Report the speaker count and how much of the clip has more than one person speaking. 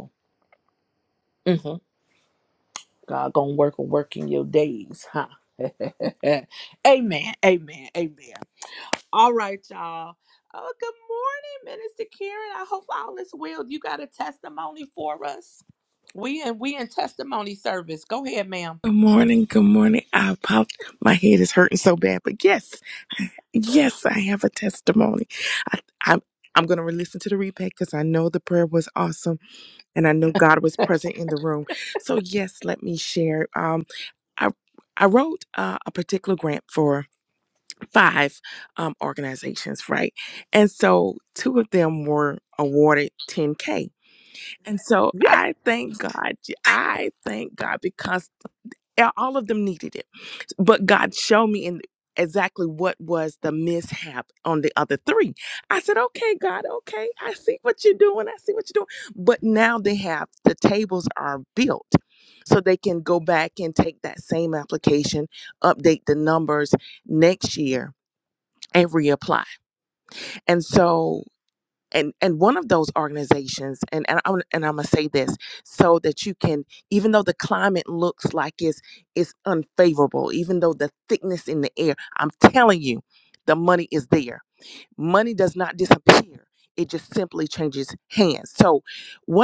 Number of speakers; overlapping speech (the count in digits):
2, under 1%